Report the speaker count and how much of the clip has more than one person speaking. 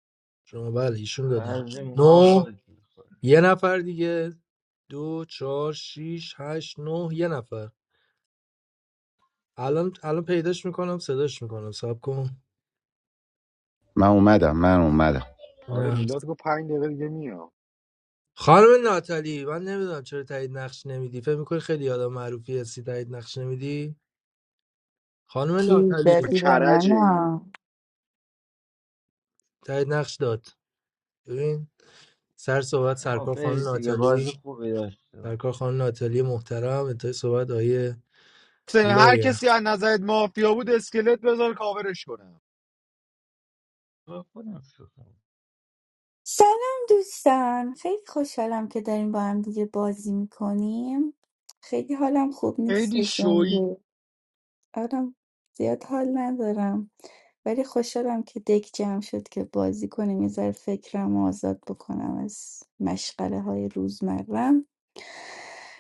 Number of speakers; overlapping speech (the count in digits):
5, about 8%